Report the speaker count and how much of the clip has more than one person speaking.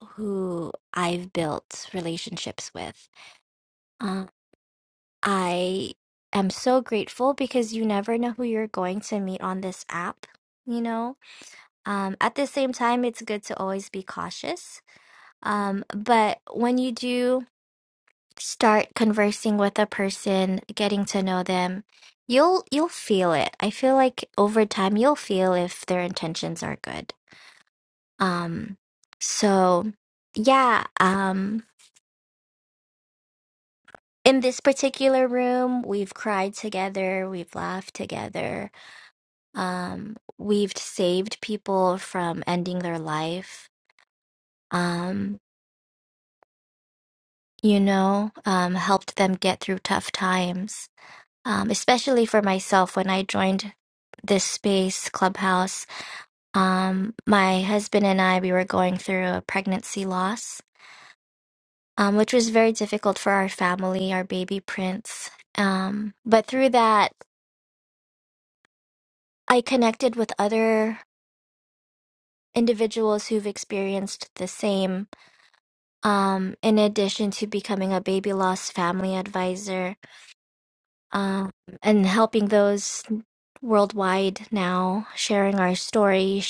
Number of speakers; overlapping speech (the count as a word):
one, no overlap